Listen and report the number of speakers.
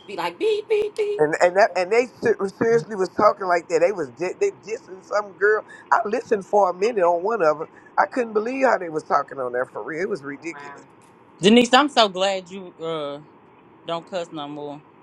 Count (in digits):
3